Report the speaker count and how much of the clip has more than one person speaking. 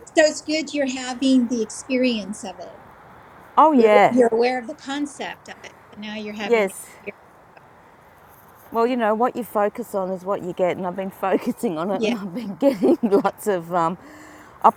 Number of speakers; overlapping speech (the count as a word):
two, about 7%